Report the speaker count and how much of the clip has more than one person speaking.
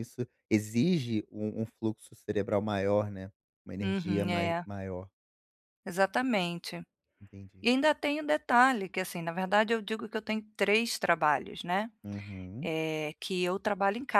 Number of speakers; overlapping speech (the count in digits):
2, about 6%